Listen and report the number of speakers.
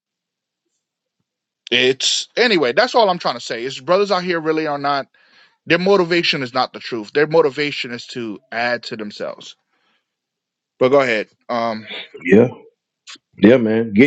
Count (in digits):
2